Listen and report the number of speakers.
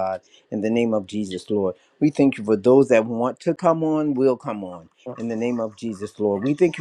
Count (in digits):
1